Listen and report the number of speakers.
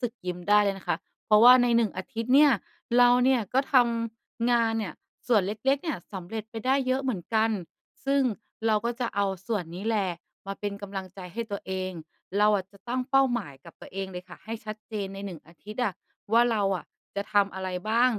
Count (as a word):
one